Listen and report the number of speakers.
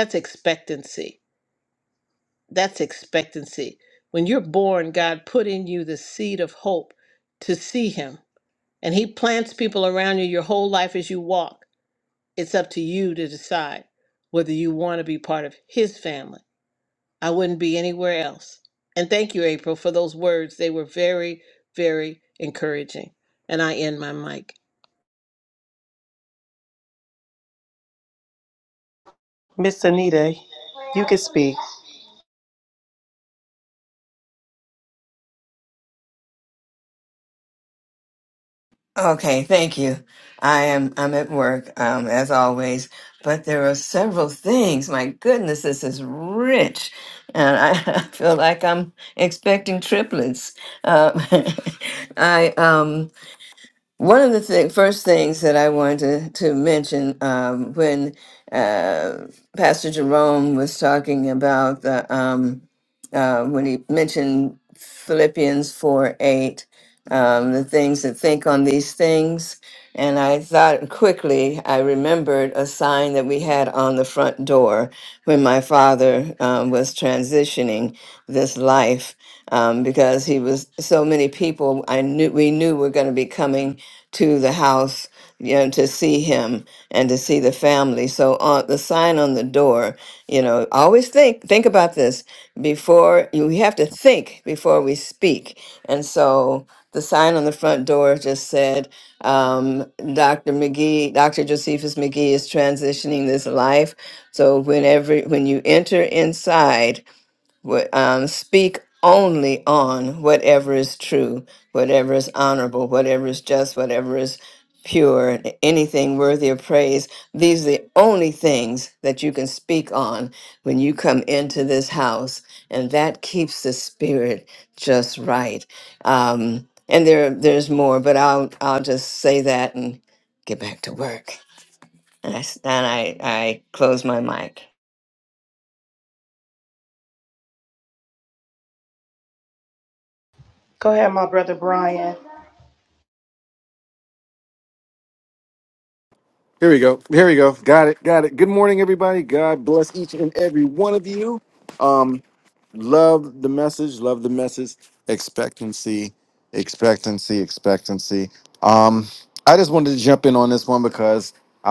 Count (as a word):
four